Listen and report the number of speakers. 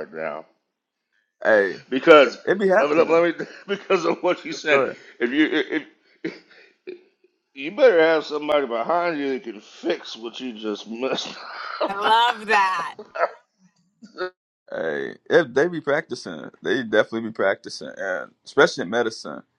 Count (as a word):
three